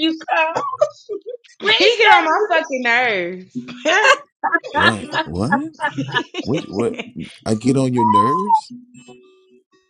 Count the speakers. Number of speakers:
three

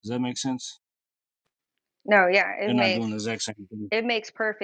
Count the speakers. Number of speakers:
two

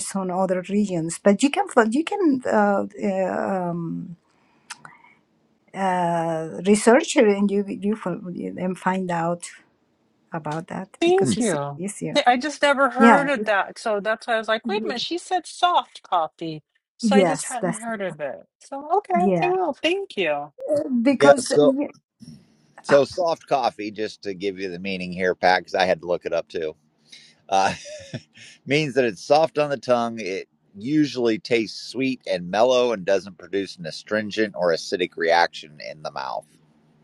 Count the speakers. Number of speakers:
three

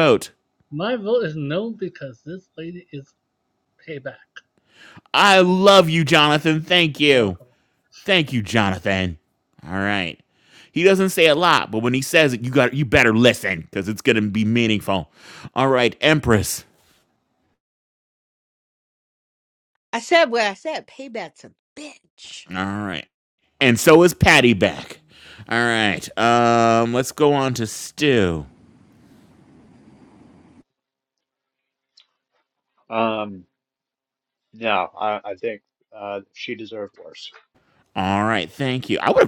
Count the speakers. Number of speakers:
four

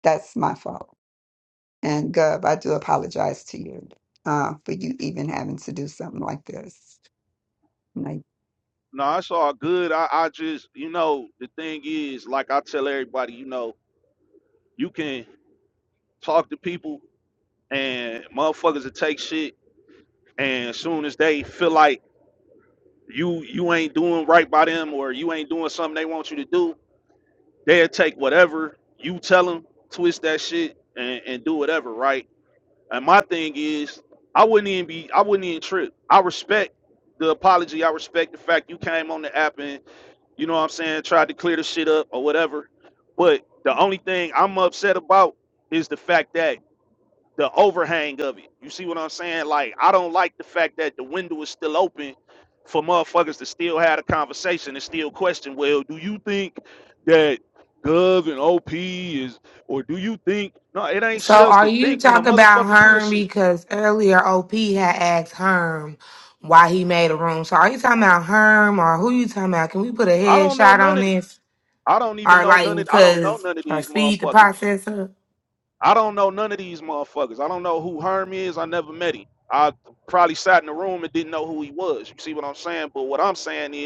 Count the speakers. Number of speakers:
three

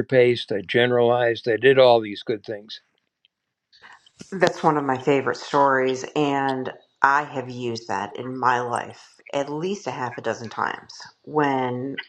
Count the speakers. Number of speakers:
two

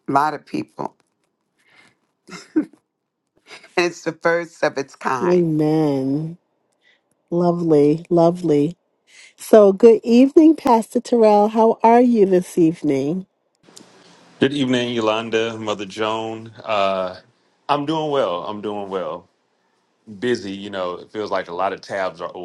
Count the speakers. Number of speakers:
three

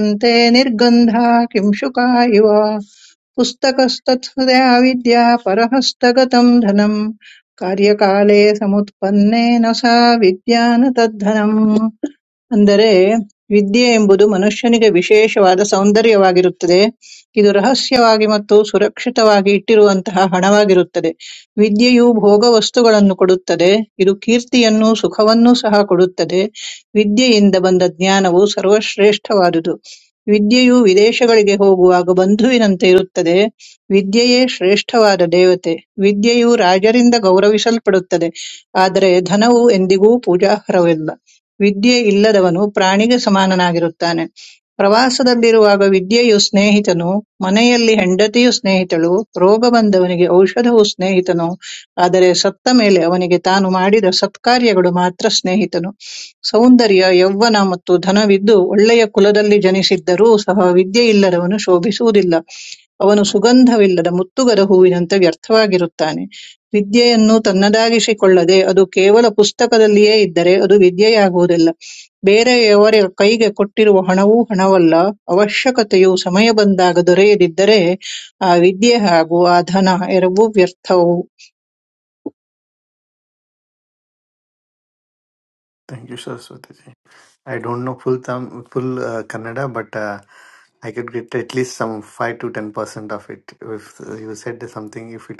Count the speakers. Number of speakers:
two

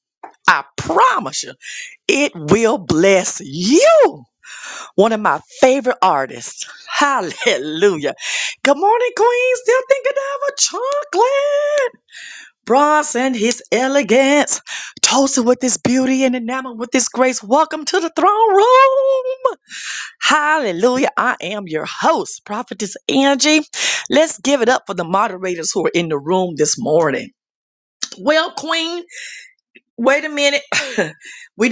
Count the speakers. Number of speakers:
one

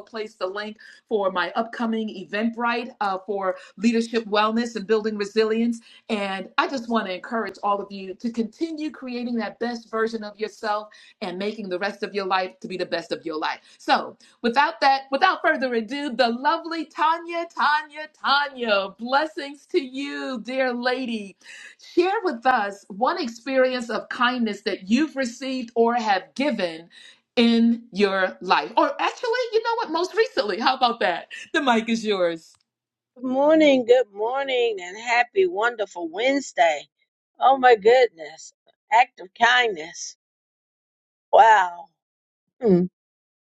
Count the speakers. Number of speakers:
two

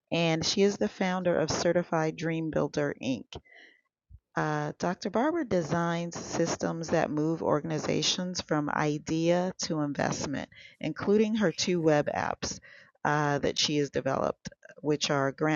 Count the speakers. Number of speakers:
one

